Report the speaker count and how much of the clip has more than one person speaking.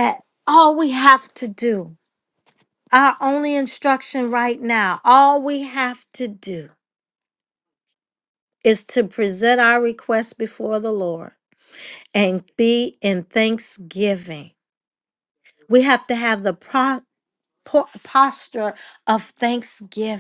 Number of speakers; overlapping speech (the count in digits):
1, no overlap